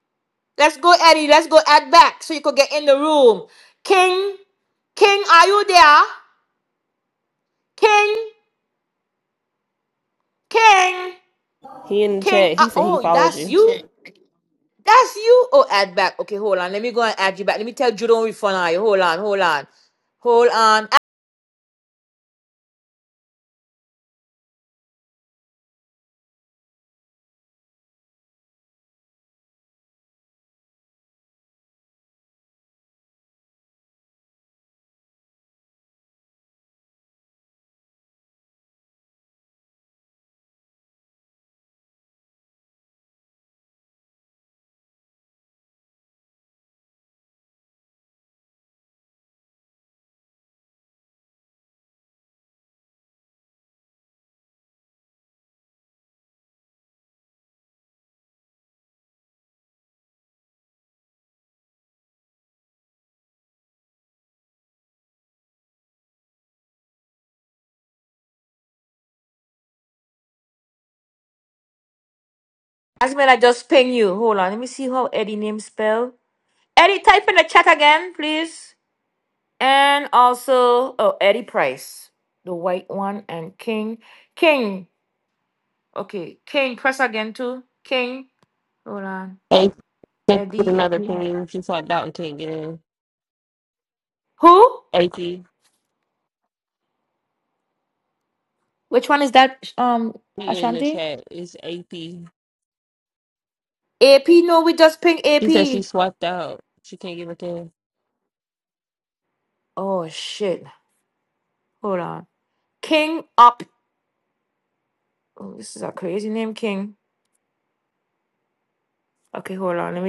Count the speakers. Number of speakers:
2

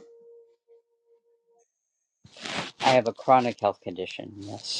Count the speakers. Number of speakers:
1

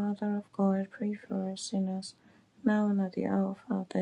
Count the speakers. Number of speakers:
1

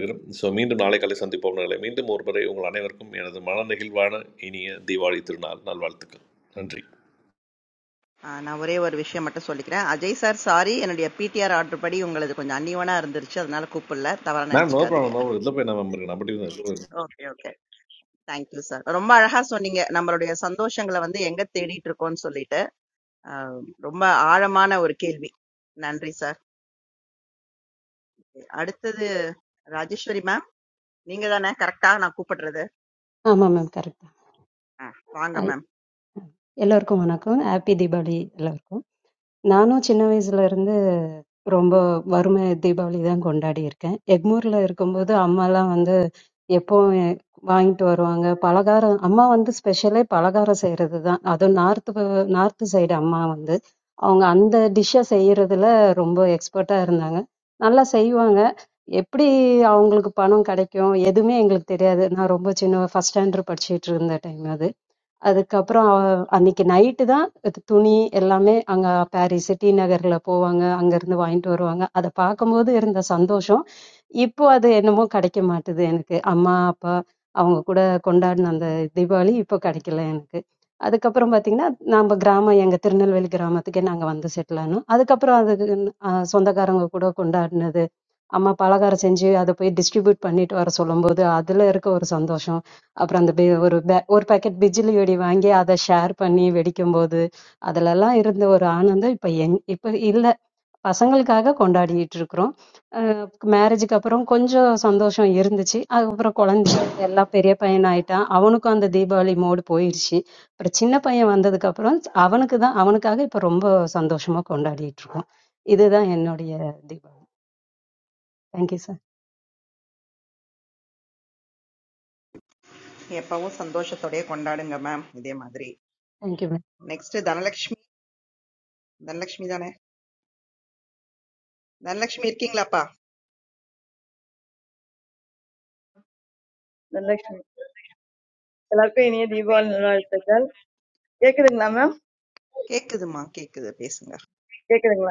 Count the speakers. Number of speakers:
4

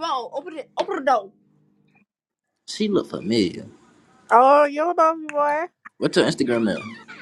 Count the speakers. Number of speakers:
3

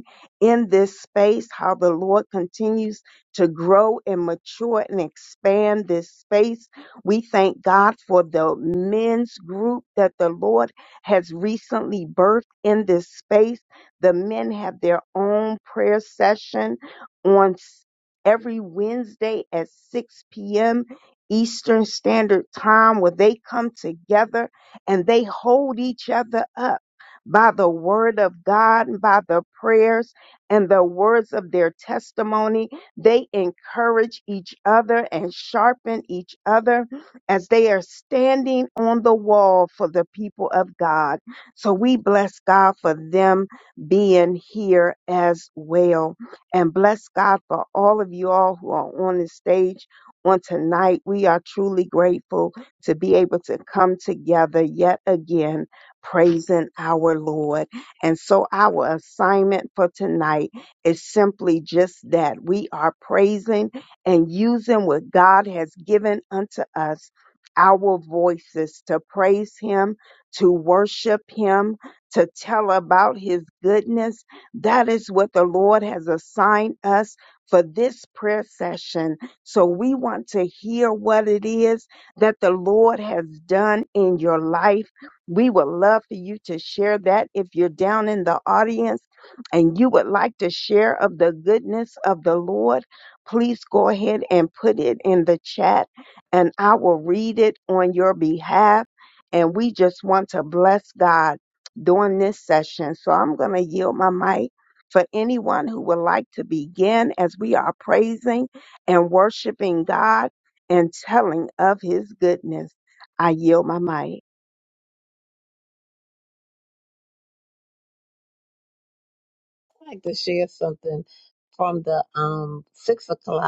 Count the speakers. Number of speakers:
2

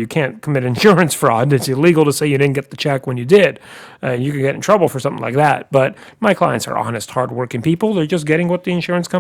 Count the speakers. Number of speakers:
1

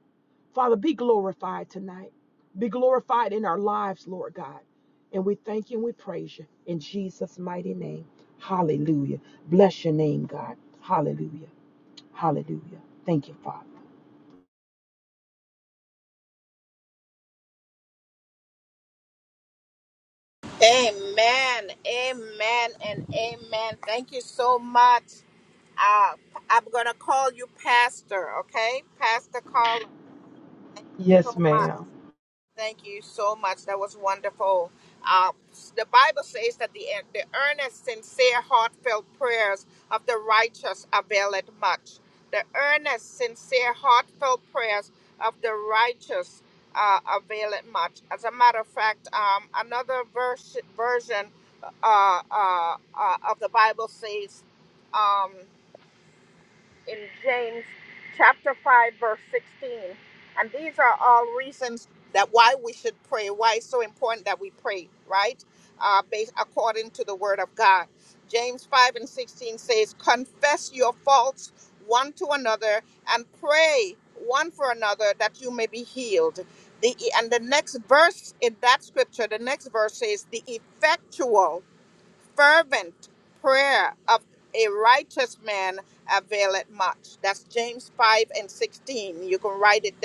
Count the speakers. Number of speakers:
2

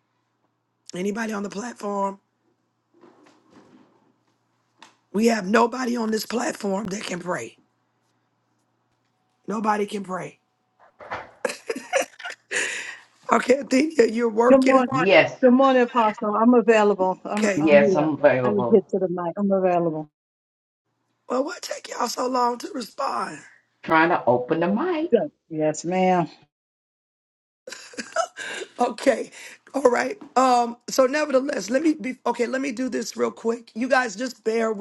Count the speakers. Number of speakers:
3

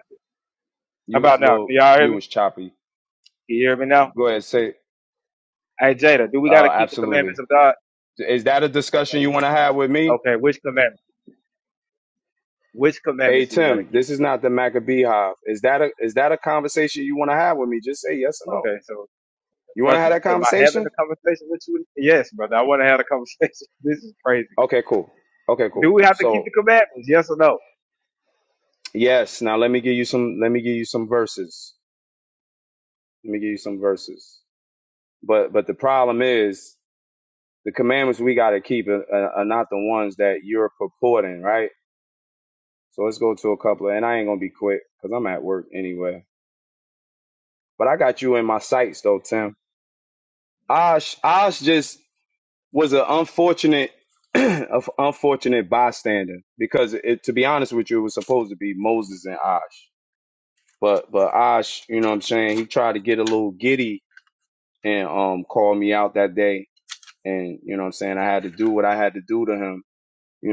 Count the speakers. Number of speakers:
2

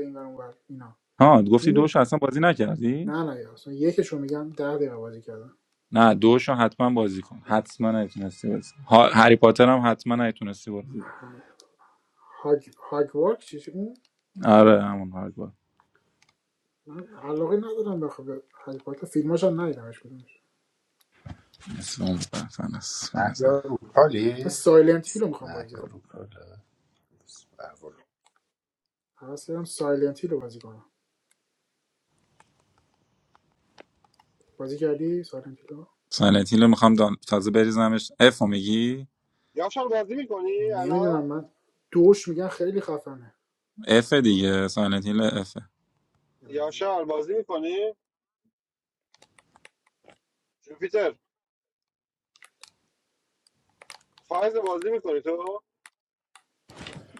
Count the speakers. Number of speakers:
4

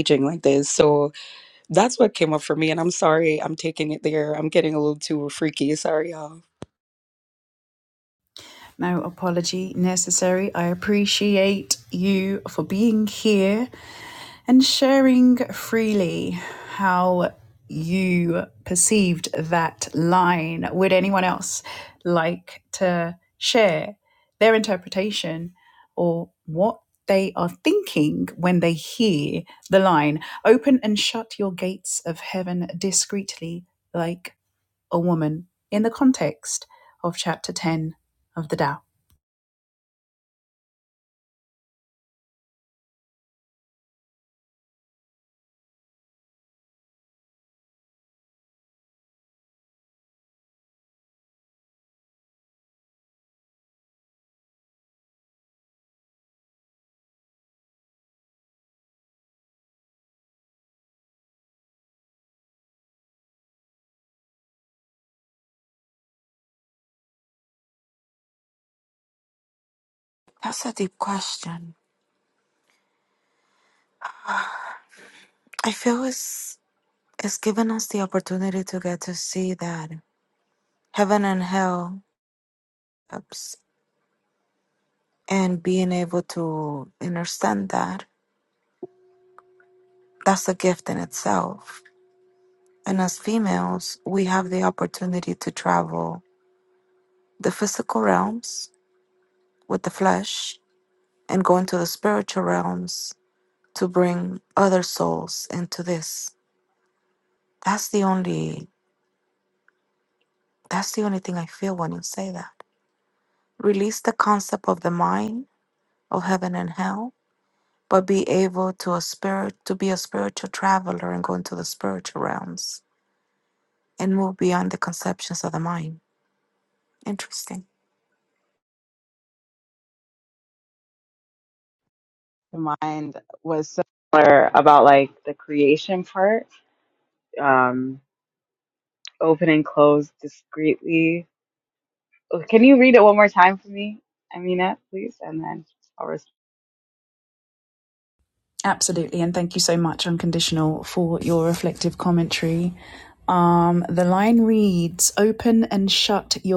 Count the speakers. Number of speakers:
4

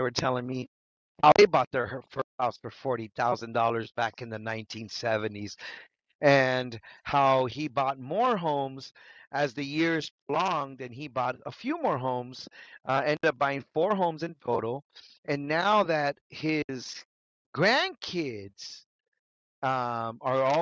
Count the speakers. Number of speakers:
1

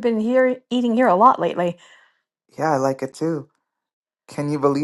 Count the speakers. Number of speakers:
2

